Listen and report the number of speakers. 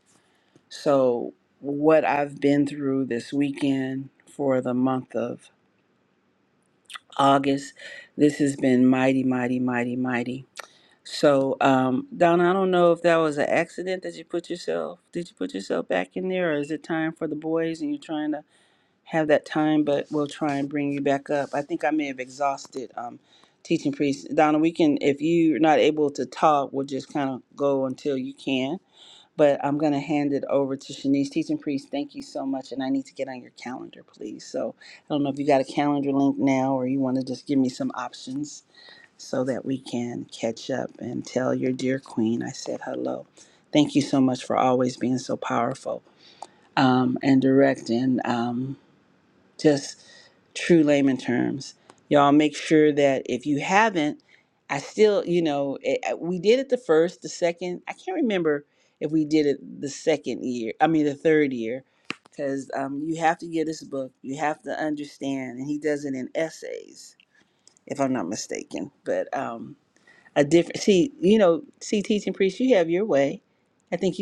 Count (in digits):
1